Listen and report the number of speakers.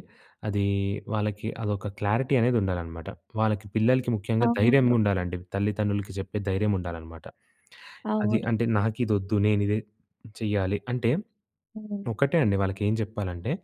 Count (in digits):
2